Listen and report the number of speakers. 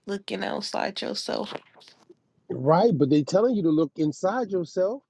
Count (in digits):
2